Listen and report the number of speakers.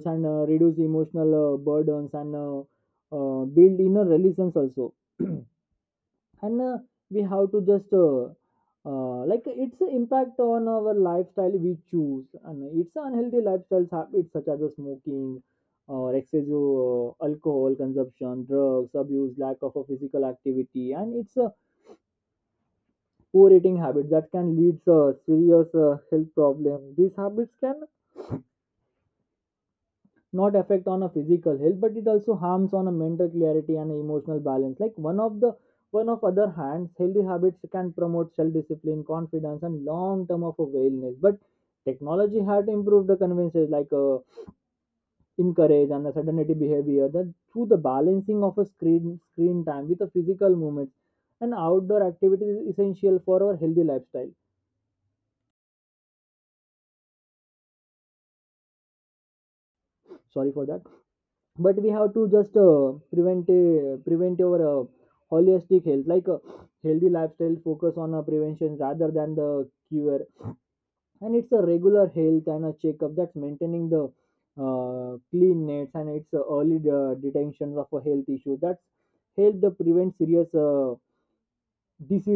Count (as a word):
one